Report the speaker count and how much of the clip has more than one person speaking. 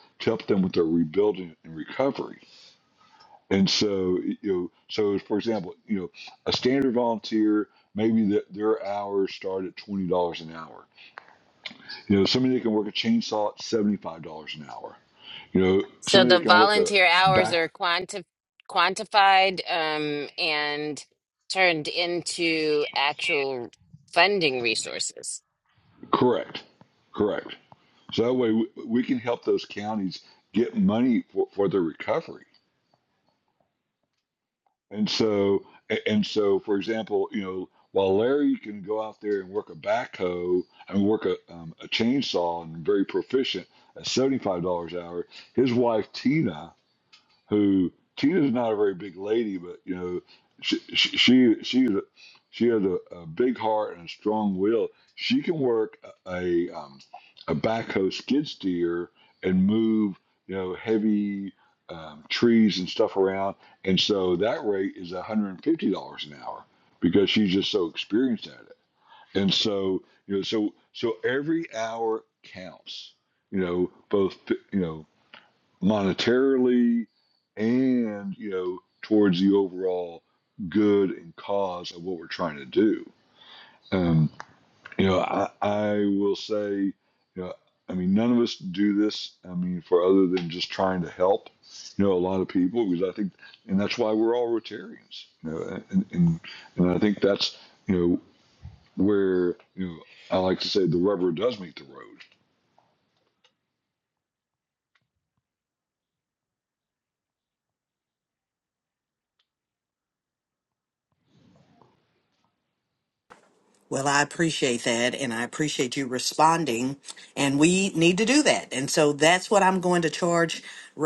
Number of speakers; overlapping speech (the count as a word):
three, about 1%